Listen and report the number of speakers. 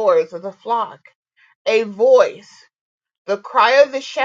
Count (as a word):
one